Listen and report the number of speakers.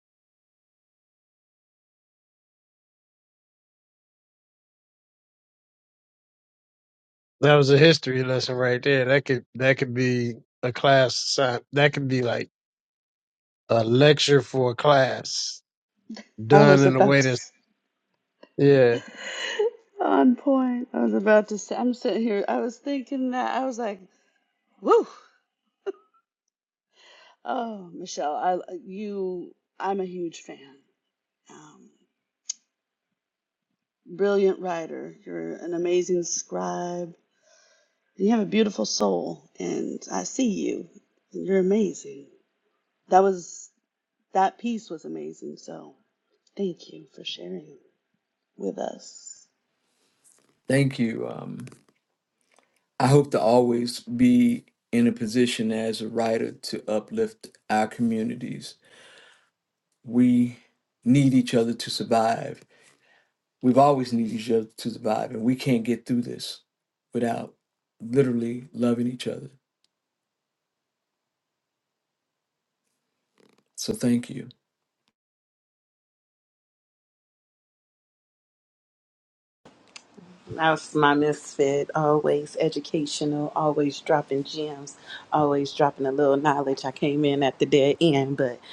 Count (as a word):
four